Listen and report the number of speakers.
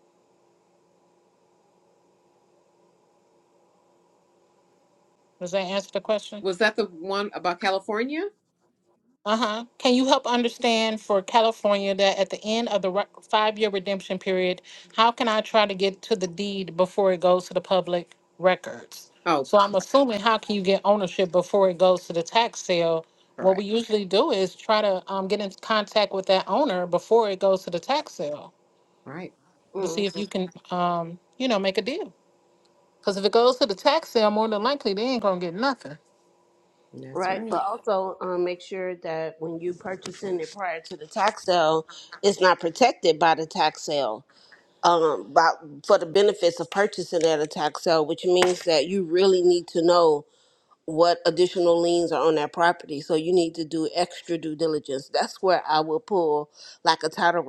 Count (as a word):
three